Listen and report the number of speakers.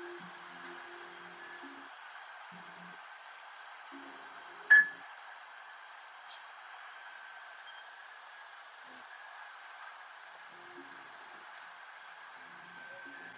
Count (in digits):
0